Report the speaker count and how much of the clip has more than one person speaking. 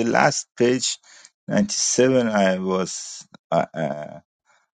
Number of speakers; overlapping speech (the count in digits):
1, no overlap